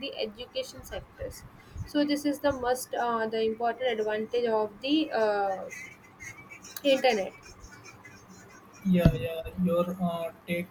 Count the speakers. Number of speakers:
2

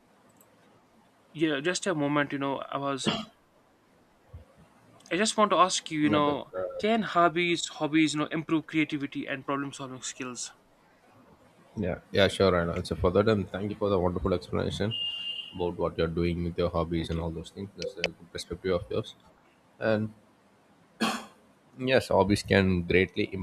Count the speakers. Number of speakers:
2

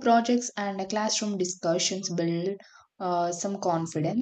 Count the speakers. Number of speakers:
1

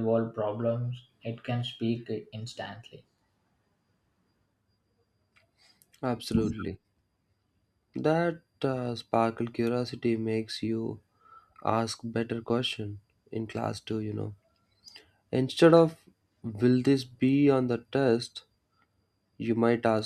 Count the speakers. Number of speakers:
2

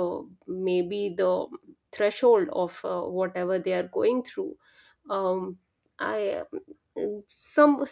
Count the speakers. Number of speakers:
1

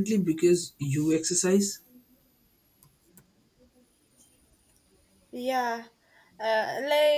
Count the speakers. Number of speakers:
2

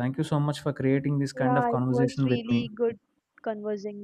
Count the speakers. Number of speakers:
2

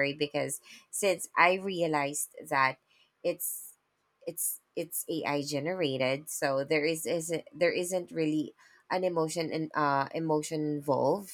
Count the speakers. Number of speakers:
1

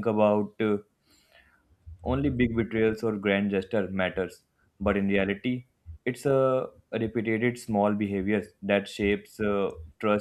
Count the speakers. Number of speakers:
1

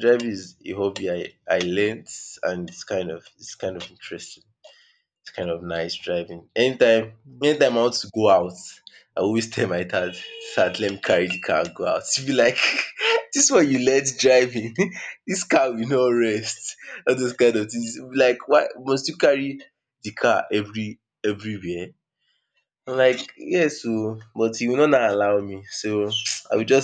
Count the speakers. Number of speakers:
1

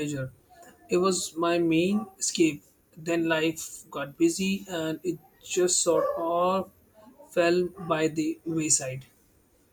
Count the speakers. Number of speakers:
1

